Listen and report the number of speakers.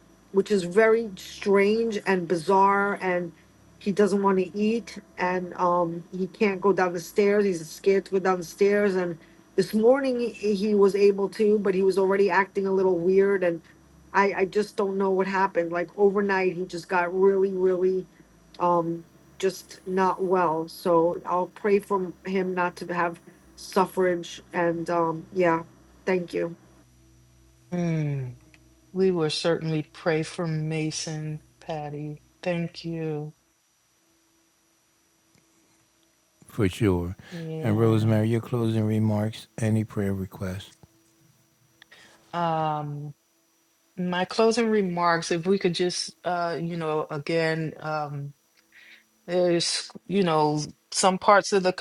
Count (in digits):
3